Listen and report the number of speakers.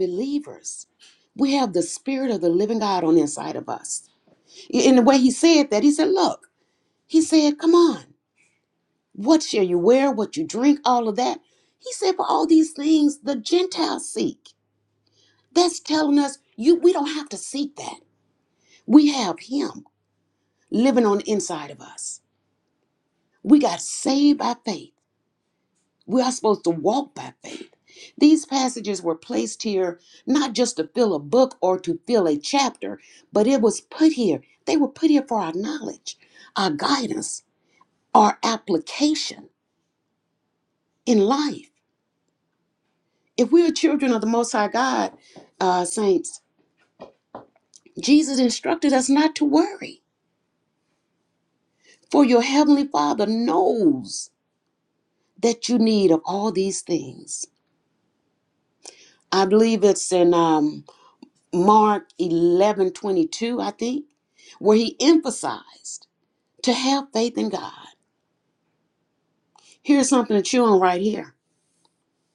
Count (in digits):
1